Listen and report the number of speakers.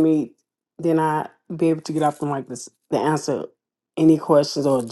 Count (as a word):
one